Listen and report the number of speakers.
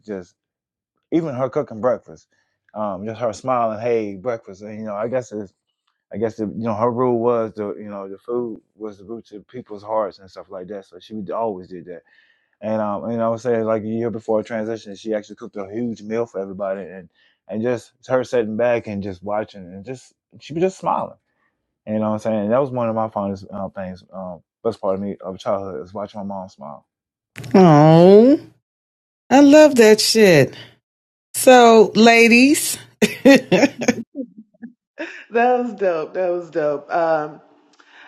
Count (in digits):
3